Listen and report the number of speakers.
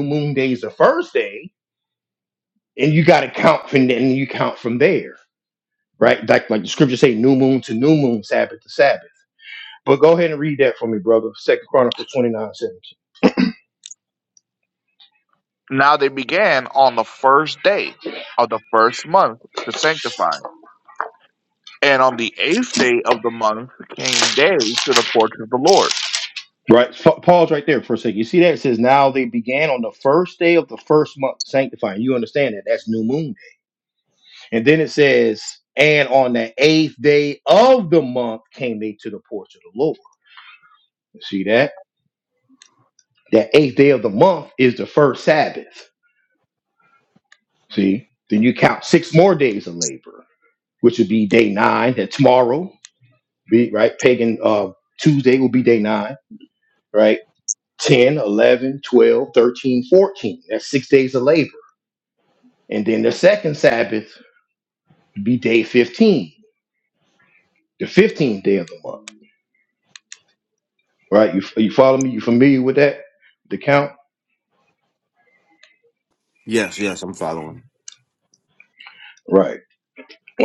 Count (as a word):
three